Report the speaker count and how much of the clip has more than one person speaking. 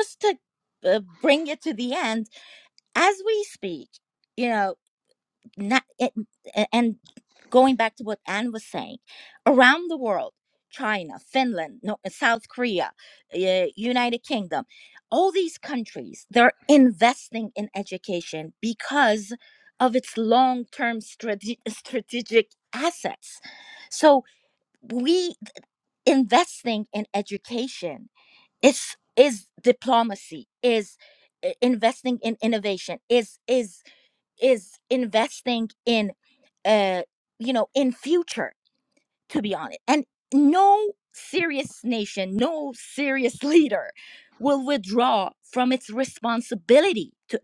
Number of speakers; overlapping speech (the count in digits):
1, no overlap